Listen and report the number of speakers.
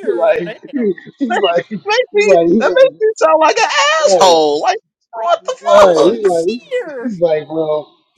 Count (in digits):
3